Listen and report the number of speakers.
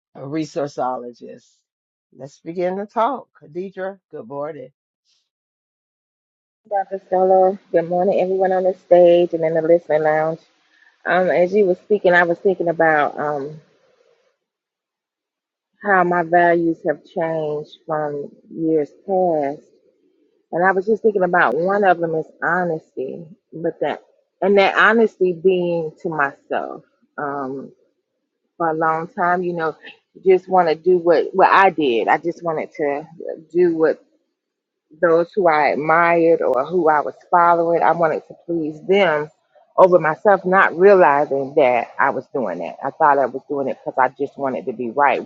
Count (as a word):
two